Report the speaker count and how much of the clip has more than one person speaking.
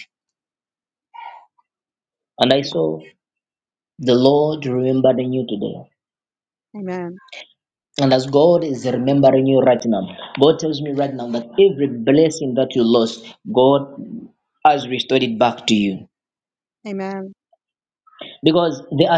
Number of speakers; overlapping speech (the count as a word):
two, about 1%